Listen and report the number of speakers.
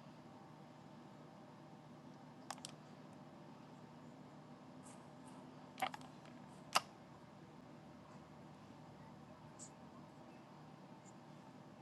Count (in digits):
0